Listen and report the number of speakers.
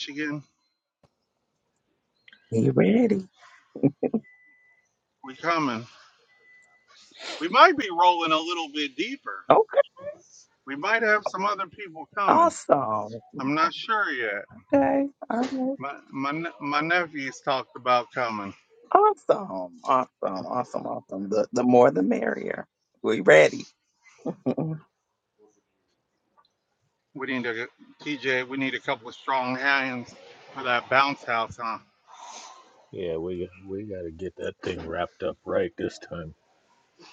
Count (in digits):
3